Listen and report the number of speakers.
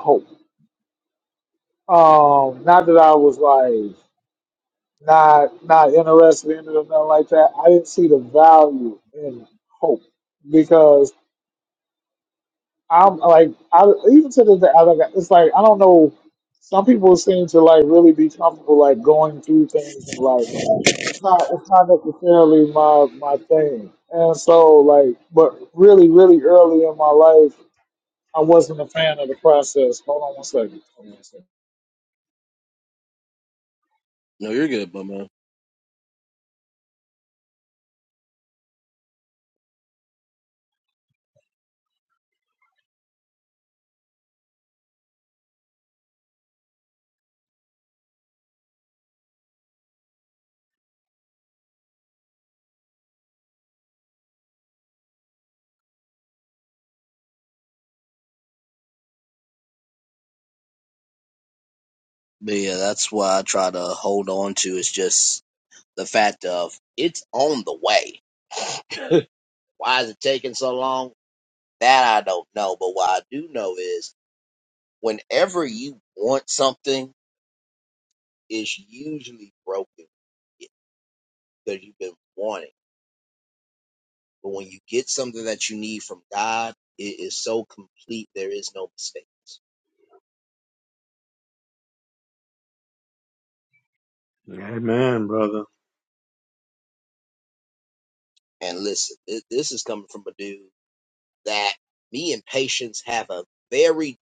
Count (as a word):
three